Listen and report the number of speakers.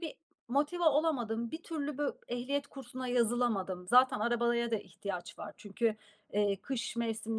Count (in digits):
1